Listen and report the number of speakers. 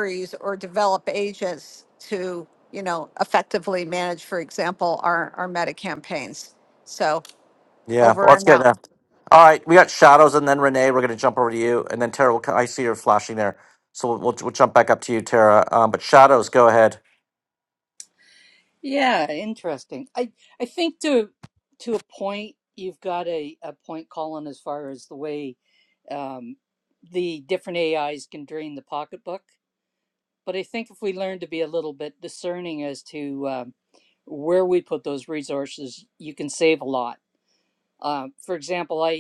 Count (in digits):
3